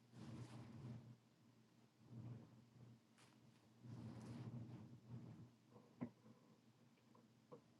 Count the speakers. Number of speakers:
zero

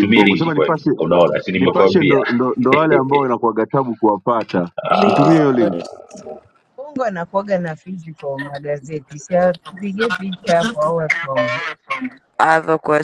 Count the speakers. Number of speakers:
four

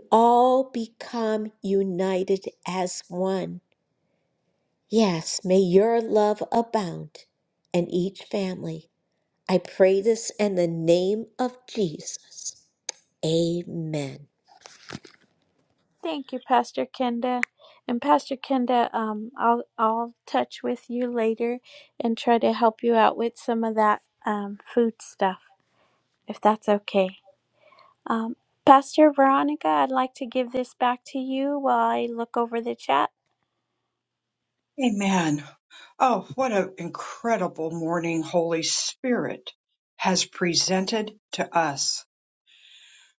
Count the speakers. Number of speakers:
three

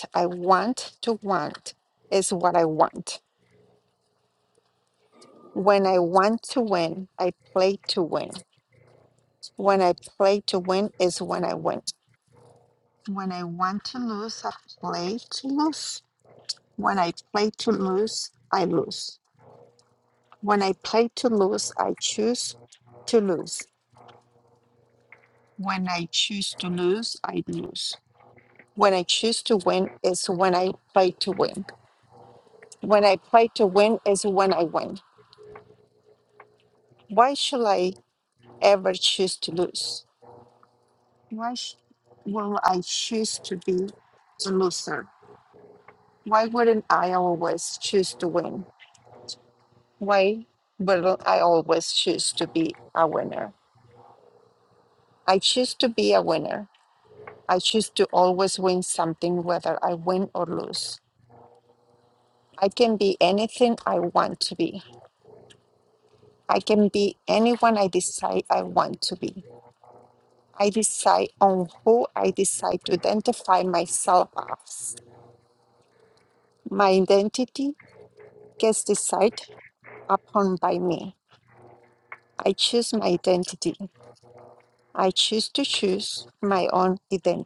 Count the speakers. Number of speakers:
one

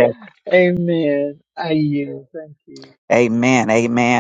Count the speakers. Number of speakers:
two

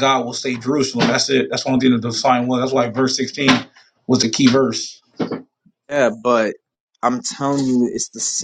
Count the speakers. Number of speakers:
two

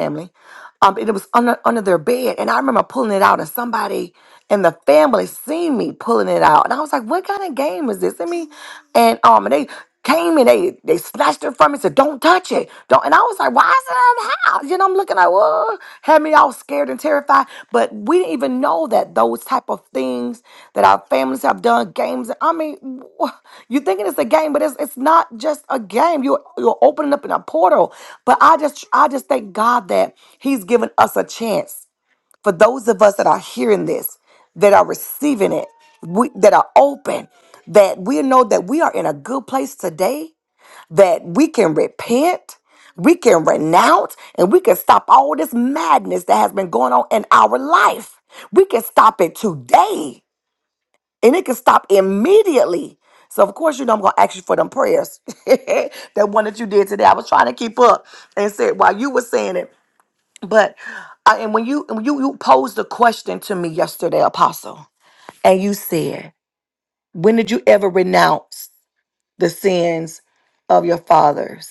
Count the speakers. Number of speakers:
one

